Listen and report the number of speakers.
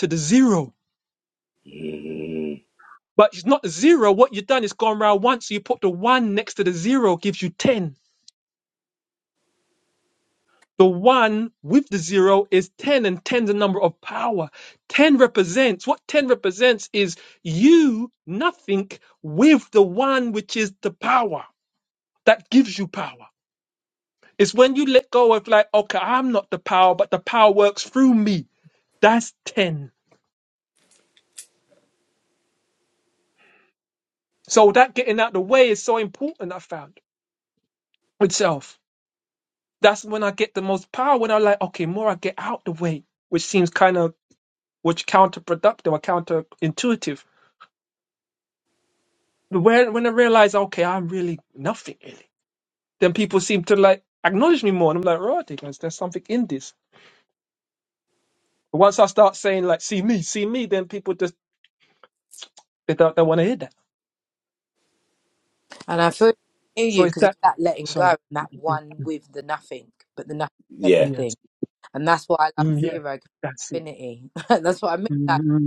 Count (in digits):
3